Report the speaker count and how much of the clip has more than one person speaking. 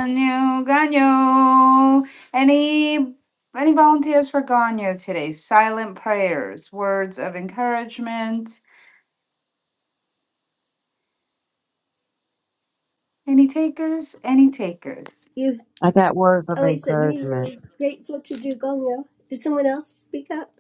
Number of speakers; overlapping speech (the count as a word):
three, about 5%